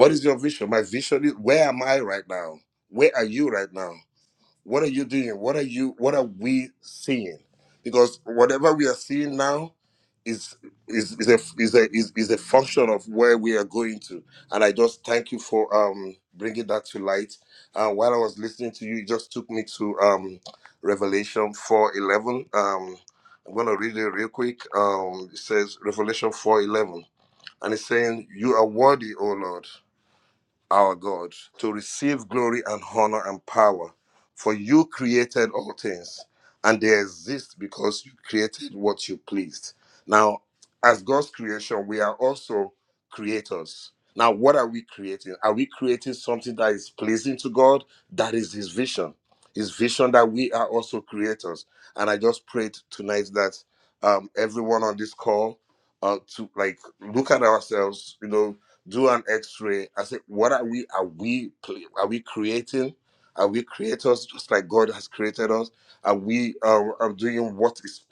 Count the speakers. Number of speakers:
1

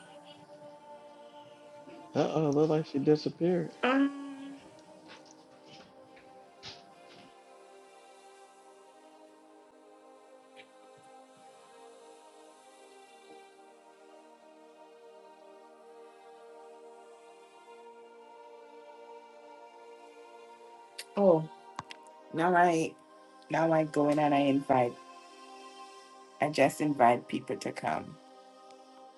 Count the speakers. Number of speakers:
2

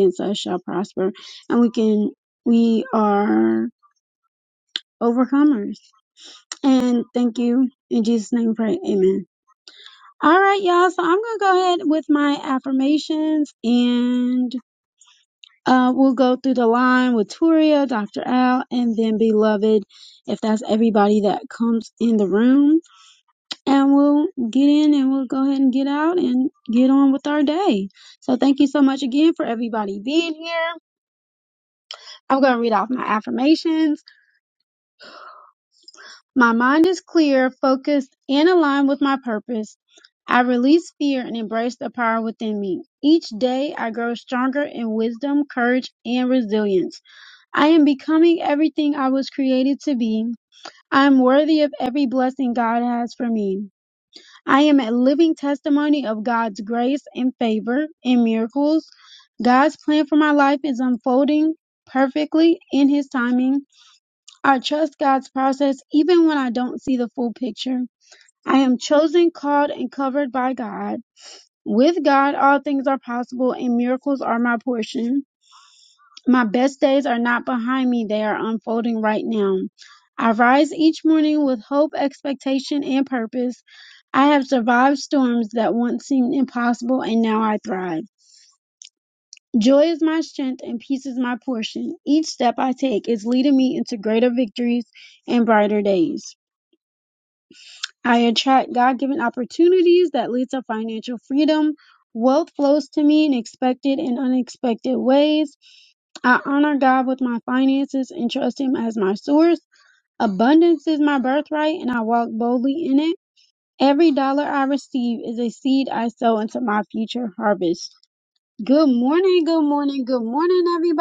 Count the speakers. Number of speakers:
1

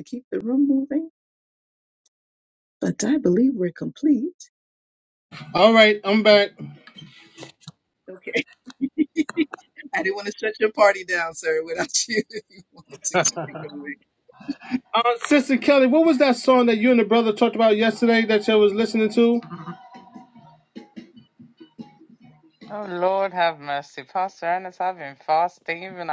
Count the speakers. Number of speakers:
3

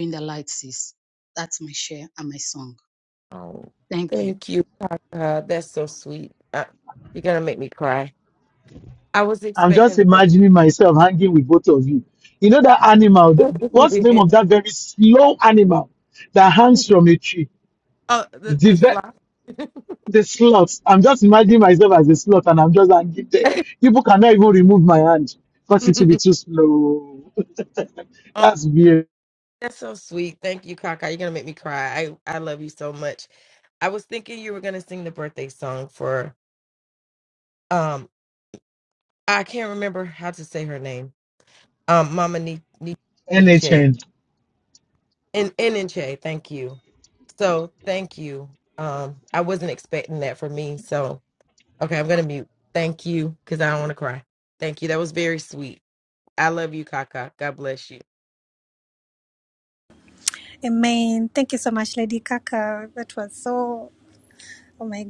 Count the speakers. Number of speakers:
4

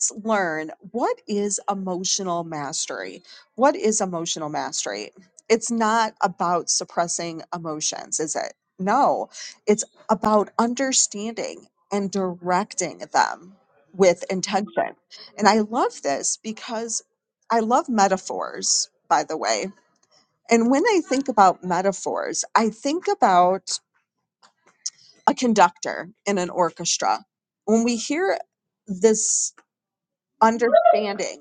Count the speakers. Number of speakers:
1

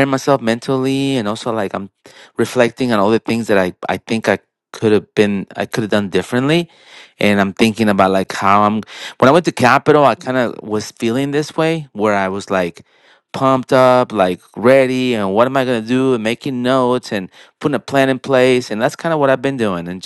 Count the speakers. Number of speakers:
1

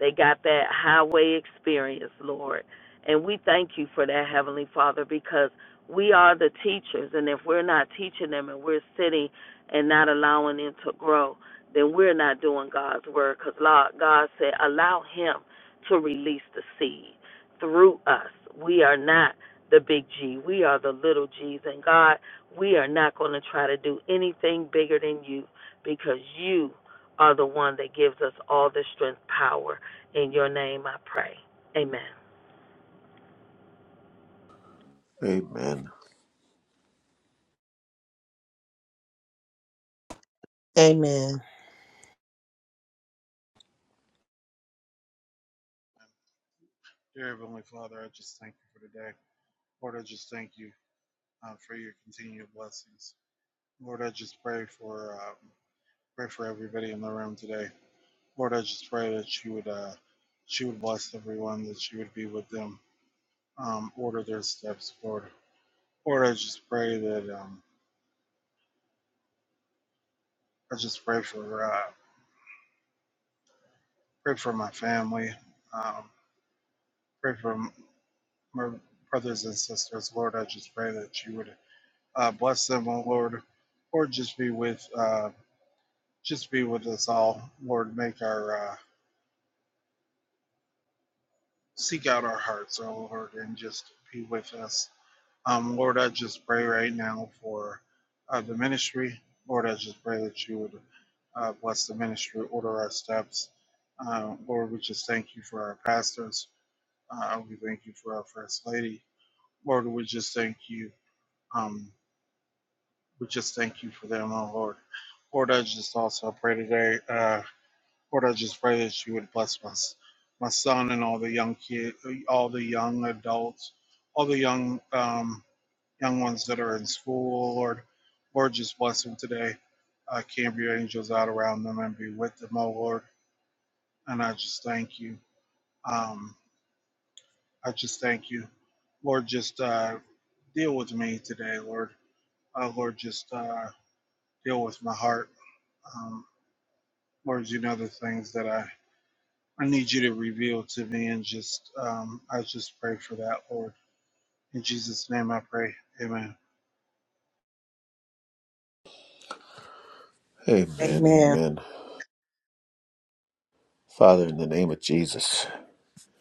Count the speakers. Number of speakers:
4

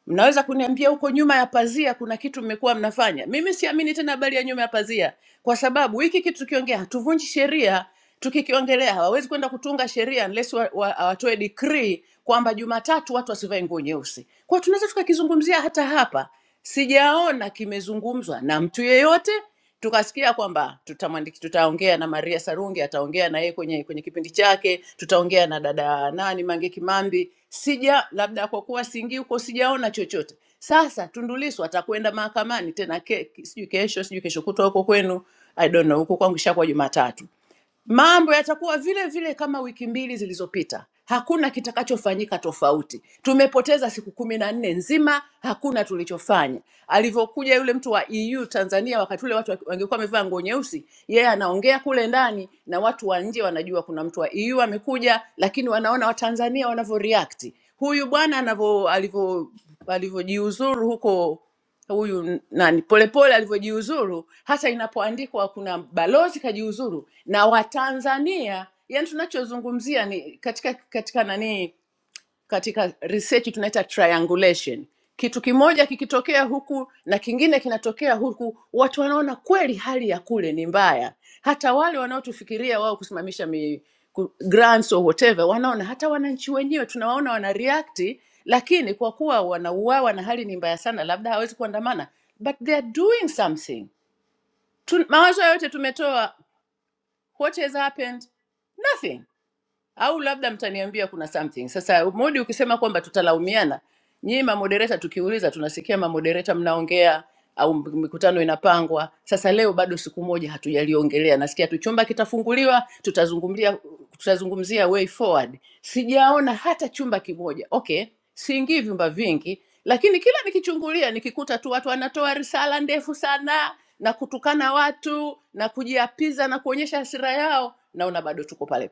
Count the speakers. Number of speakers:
1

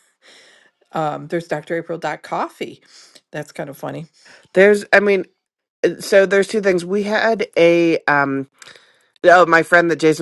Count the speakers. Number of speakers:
2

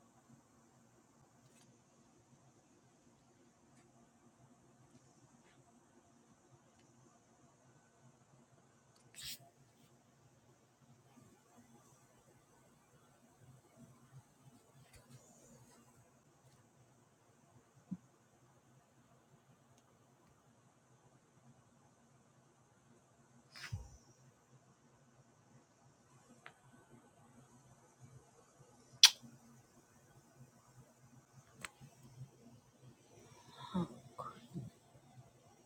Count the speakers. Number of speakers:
0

